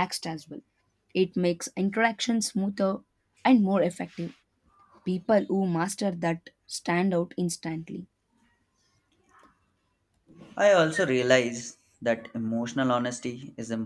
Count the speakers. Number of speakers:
two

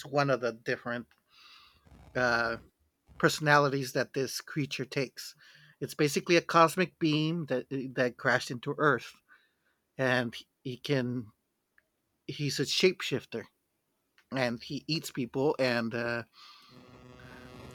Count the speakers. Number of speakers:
one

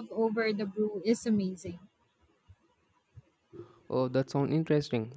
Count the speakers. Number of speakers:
two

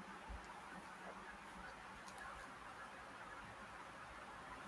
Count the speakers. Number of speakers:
zero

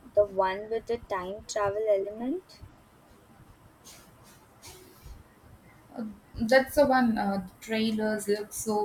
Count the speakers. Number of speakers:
two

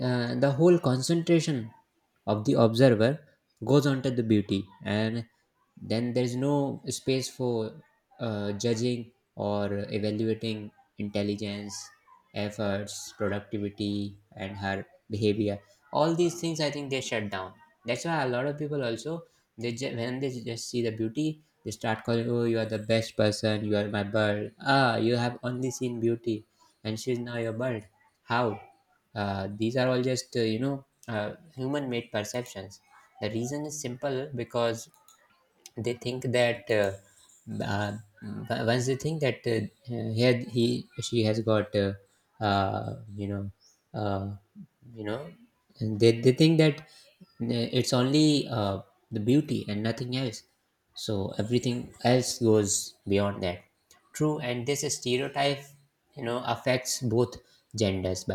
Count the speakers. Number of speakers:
one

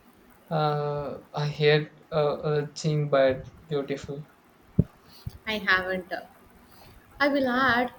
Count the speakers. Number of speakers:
two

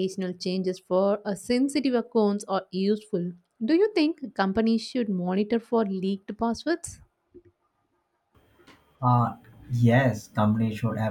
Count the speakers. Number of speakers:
two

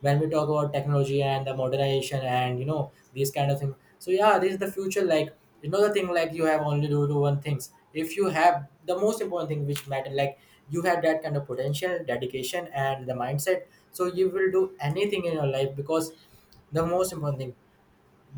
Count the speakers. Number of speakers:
one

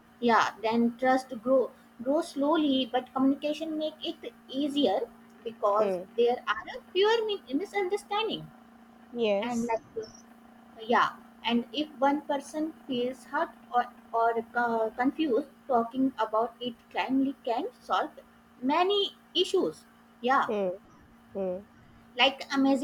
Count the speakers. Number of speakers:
two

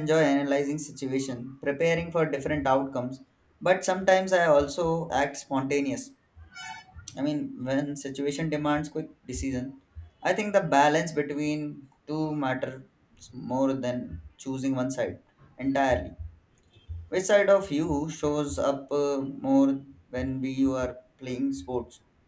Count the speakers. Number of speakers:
one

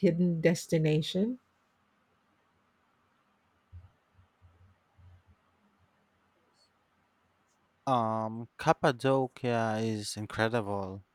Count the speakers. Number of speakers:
two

